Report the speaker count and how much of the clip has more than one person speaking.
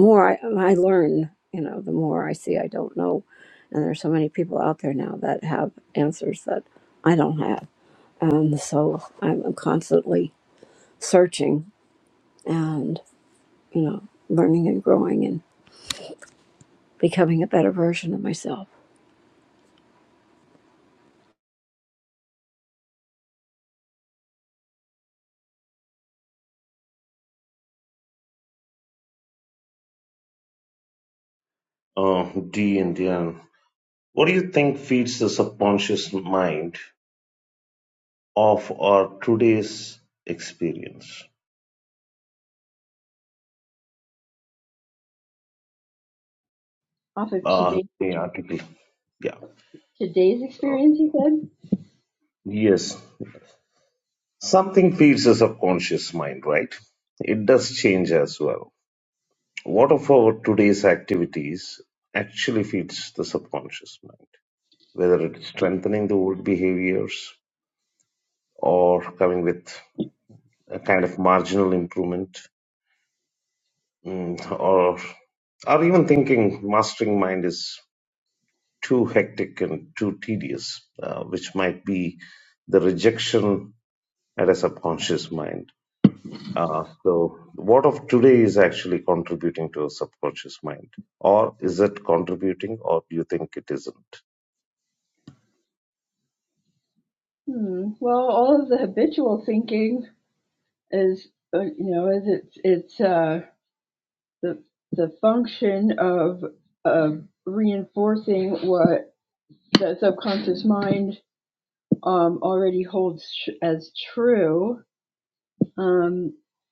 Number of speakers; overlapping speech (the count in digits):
3, about 1%